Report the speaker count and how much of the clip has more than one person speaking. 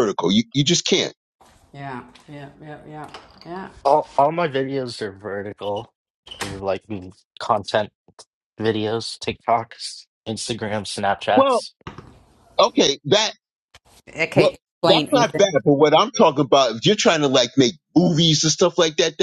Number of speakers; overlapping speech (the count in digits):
3, about 5%